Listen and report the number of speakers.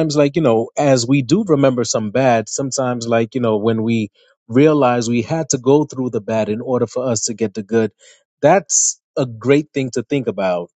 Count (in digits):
1